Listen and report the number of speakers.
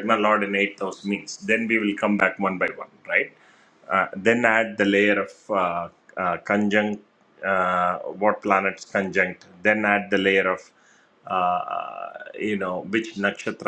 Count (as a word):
one